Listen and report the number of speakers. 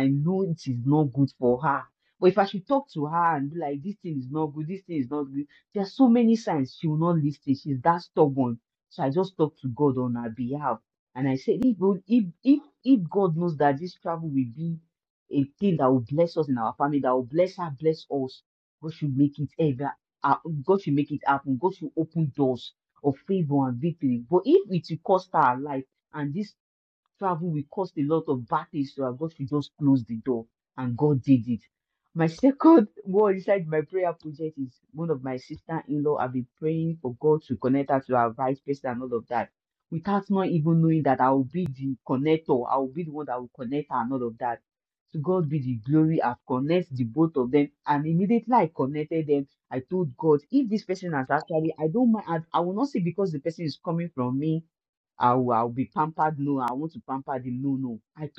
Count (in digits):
1